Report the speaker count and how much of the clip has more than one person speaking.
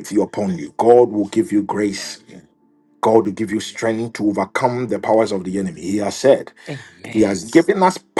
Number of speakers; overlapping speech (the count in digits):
2, about 8%